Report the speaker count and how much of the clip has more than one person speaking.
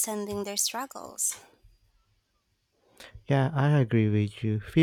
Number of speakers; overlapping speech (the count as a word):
two, no overlap